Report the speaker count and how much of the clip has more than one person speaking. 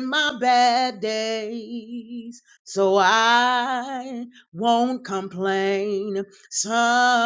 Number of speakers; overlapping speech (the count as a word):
one, no overlap